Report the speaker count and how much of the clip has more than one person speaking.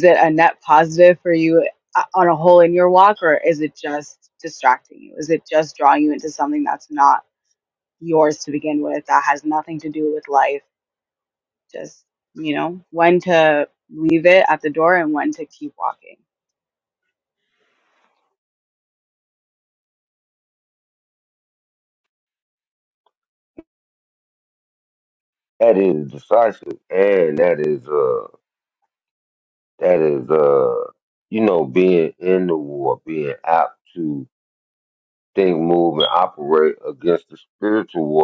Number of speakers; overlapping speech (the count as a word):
two, no overlap